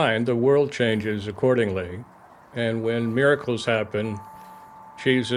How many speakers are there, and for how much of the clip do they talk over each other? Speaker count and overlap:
1, no overlap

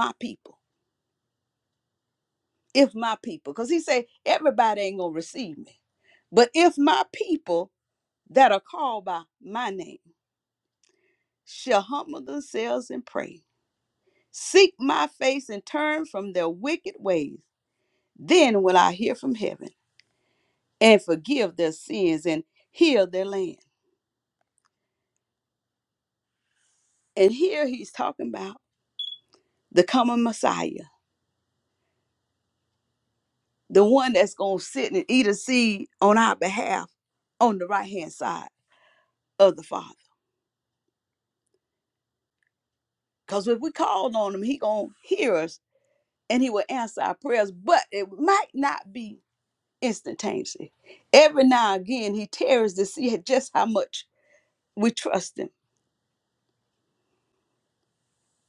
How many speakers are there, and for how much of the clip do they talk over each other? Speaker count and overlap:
1, no overlap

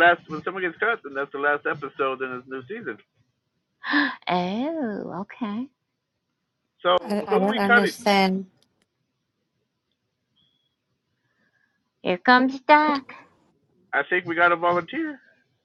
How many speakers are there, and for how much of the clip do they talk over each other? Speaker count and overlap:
3, about 6%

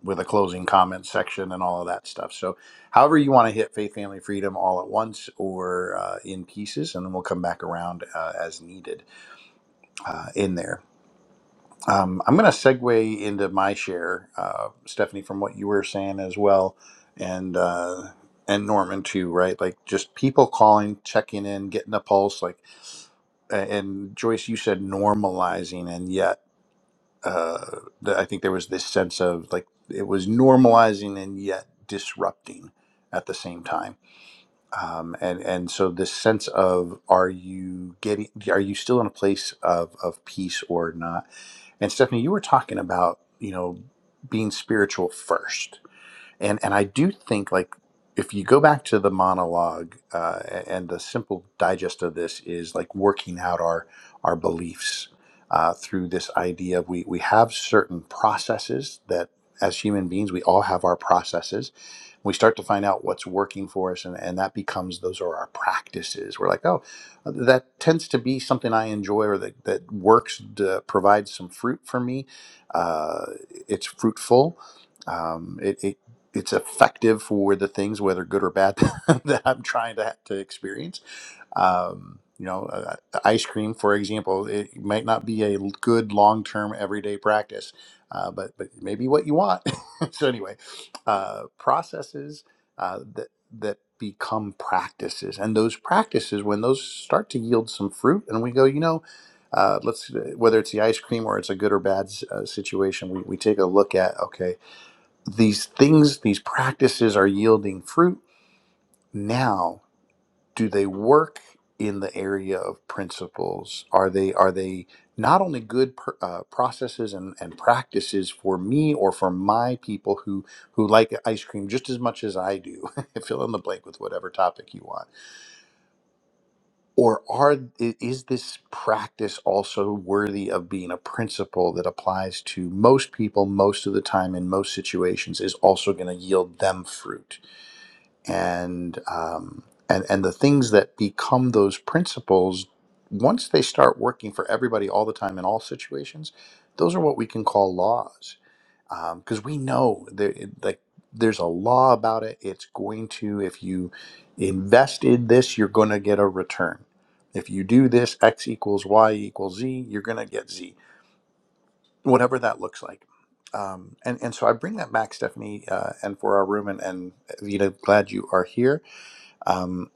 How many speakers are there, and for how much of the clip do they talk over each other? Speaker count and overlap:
1, no overlap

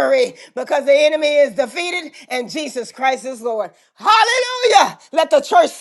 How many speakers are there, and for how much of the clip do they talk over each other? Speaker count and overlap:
1, no overlap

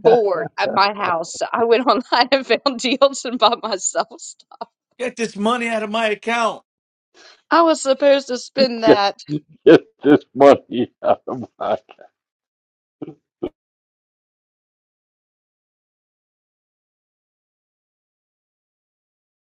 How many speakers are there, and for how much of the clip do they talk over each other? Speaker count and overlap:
3, about 1%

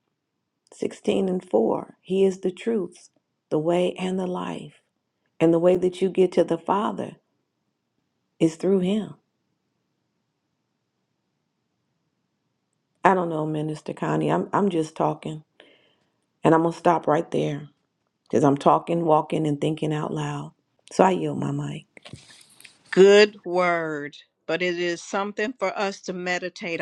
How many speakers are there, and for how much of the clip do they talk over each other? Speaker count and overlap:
2, no overlap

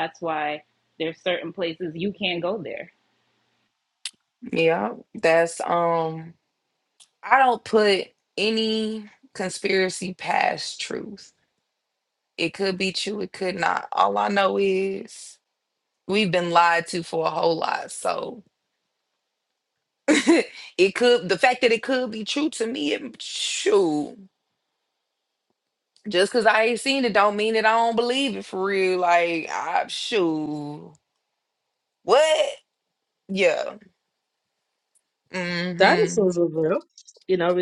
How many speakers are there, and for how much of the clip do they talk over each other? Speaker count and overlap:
3, about 1%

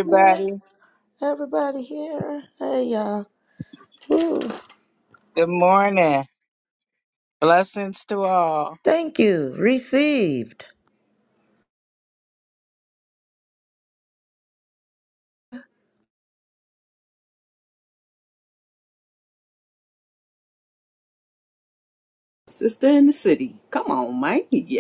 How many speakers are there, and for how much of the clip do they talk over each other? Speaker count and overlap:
3, about 2%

